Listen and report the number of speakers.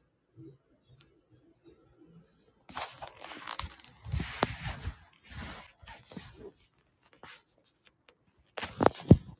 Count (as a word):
zero